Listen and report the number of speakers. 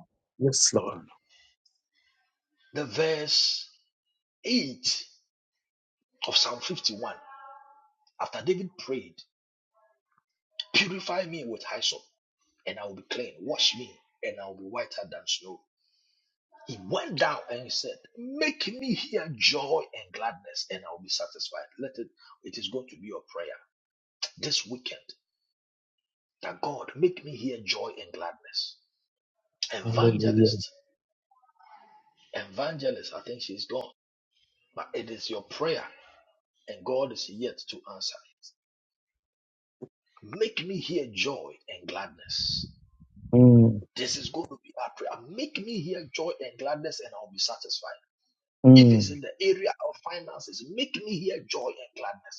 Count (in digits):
2